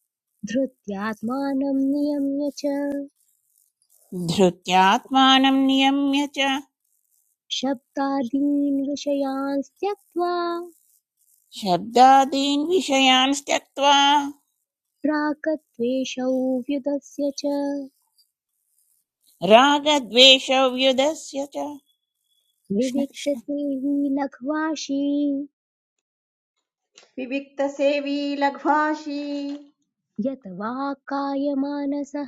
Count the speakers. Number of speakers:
three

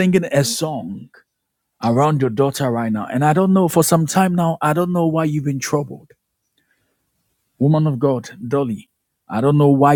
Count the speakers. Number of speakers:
one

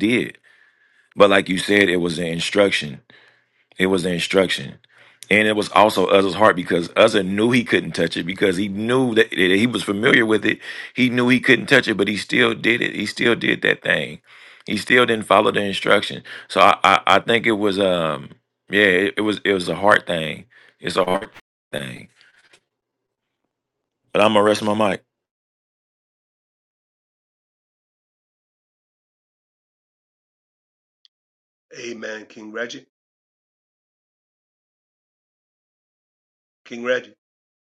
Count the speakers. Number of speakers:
two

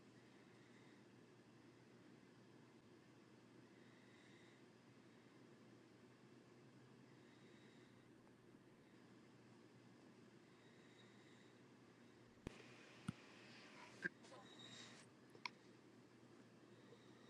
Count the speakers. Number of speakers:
zero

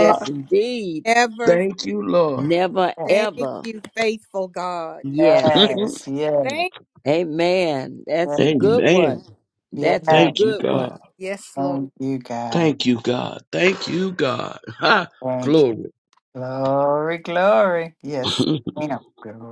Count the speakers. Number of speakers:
four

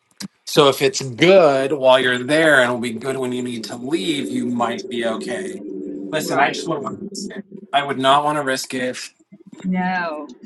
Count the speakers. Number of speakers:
two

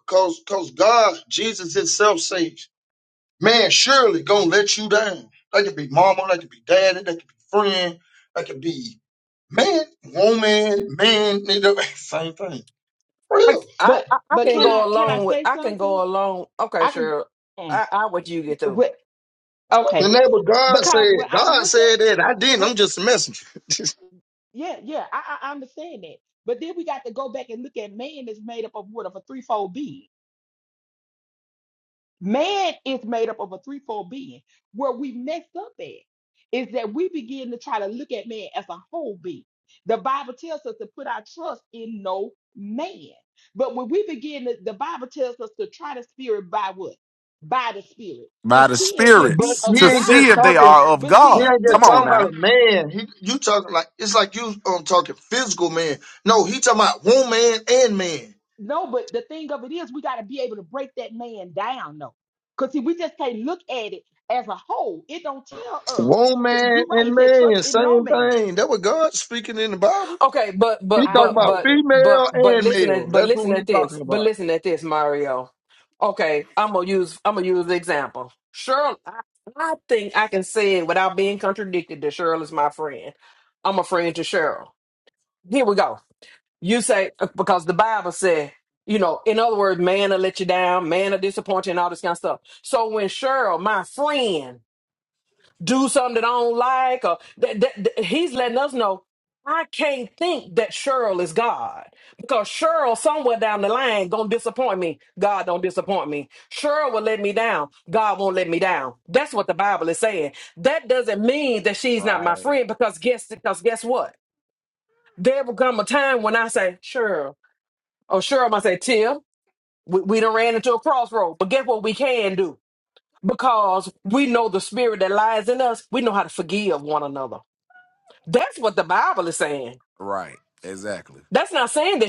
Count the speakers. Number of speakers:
four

